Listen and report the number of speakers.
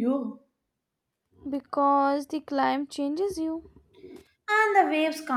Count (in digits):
2